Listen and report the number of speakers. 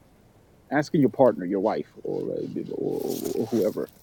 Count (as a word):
one